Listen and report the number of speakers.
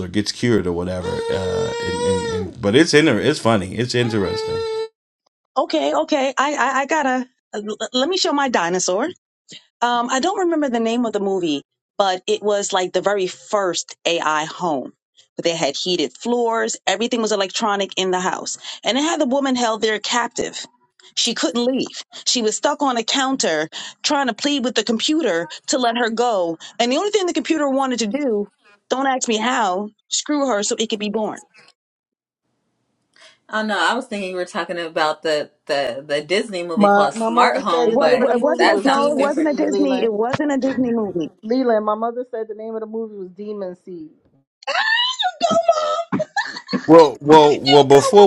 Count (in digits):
4